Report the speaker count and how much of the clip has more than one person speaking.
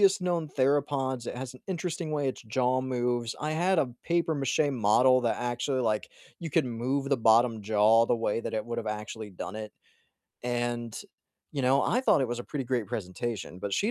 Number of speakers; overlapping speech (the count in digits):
1, no overlap